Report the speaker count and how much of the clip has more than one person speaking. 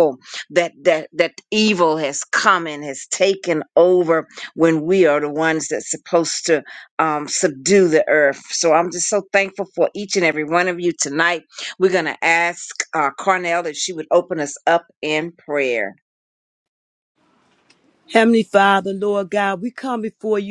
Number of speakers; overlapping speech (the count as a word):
two, no overlap